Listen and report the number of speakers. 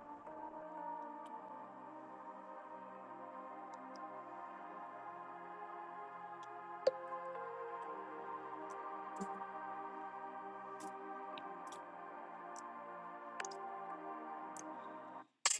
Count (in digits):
0